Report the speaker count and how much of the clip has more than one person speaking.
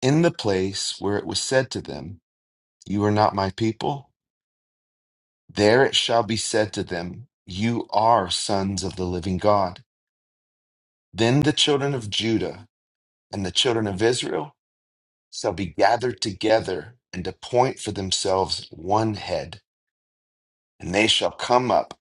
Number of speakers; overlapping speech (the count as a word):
one, no overlap